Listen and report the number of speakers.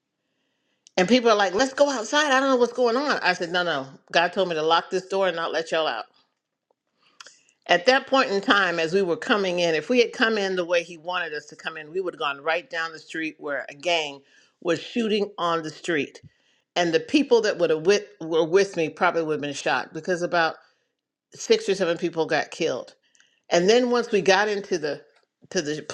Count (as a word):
one